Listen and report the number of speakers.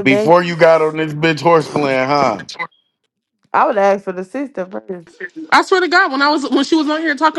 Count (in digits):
3